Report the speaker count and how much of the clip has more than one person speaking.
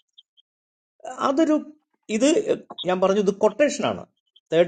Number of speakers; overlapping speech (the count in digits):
1, no overlap